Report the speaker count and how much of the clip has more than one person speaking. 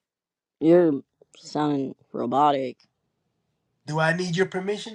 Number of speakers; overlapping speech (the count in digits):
2, no overlap